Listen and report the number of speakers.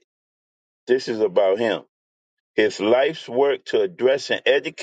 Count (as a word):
one